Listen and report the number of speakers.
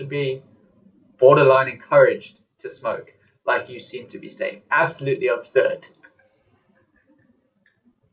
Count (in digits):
1